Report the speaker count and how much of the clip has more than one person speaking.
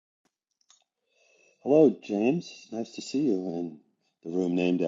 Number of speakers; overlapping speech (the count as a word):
one, no overlap